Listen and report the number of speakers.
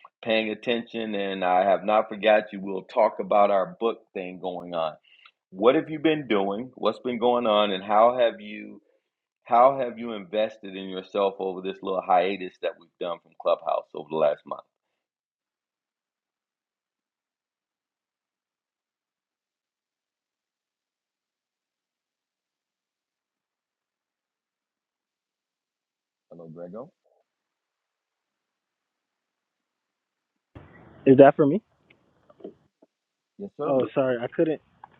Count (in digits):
2